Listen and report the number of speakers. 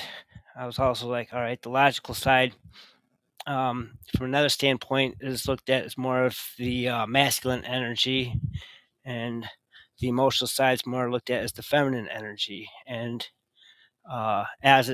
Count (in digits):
1